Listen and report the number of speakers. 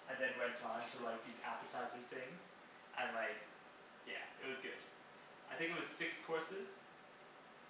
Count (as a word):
one